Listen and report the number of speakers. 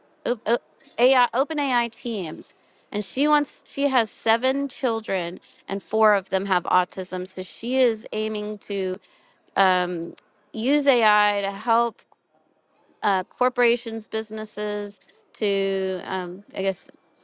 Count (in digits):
1